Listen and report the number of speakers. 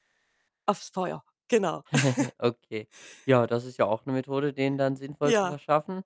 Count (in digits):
2